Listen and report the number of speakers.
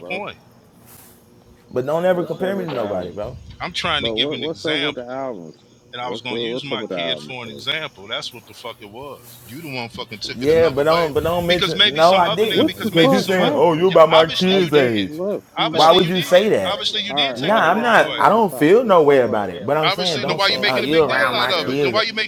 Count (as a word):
three